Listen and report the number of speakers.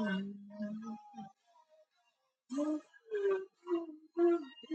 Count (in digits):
0